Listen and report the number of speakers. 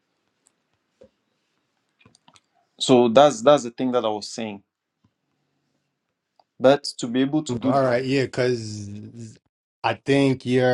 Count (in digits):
2